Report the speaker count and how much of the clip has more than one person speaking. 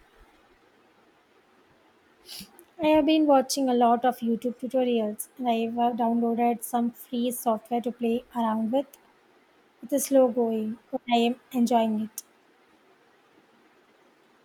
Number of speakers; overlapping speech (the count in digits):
1, no overlap